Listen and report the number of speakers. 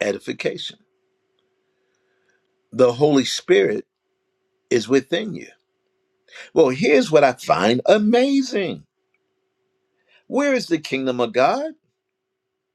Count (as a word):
one